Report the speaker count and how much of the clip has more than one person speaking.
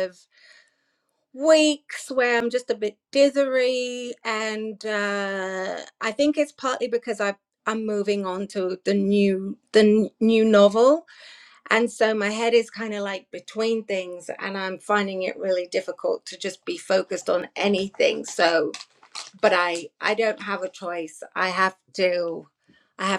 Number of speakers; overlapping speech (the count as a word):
one, no overlap